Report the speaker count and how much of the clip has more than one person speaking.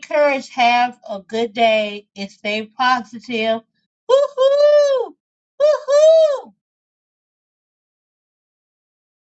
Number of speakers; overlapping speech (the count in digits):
1, no overlap